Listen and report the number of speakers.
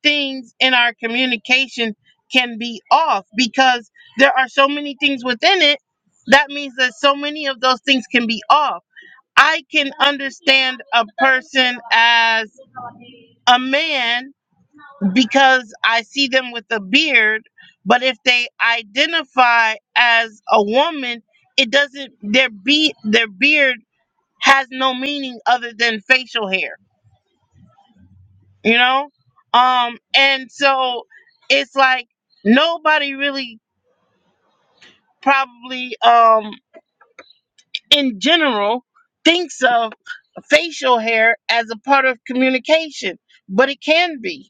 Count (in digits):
1